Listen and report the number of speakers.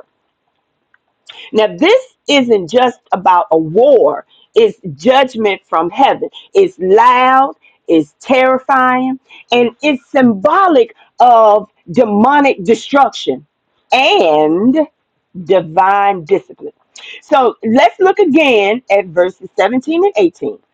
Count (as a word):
one